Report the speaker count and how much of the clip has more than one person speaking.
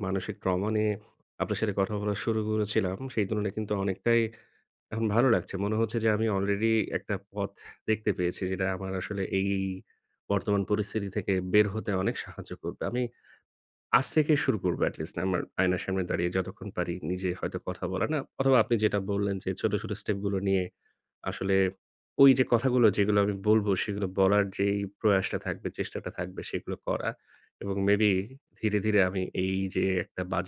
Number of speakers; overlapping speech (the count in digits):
1, no overlap